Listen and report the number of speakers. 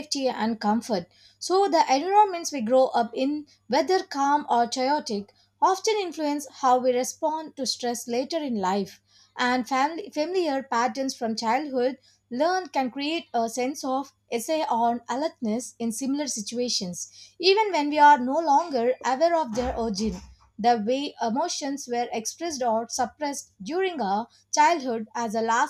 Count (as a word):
one